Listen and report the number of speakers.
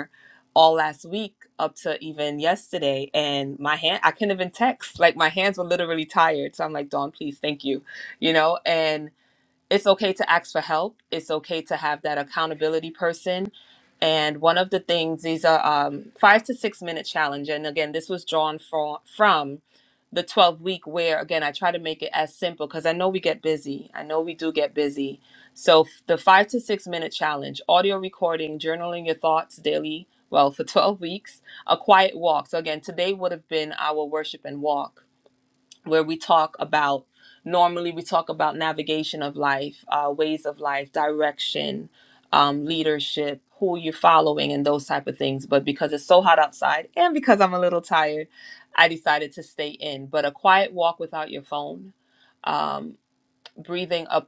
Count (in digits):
1